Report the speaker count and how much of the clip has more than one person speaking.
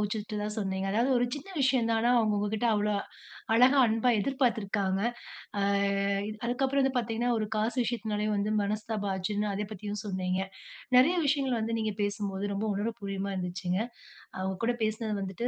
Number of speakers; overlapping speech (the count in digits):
1, no overlap